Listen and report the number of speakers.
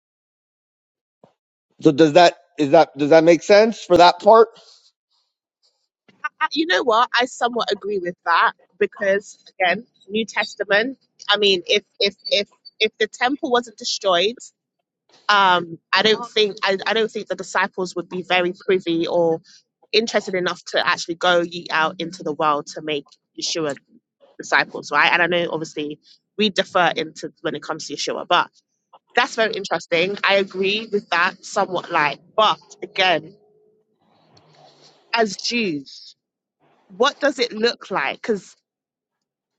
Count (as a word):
two